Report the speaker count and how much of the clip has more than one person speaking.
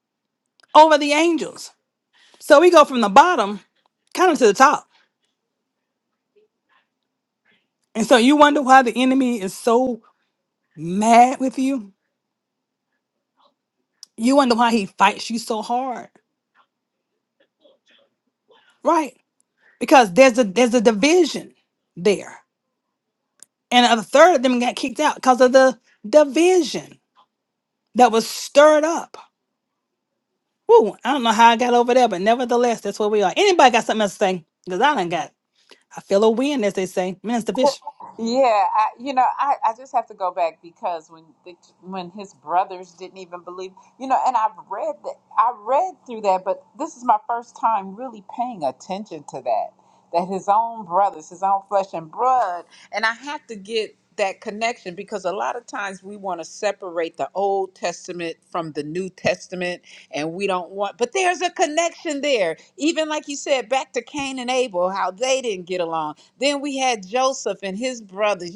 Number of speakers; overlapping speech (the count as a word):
two, no overlap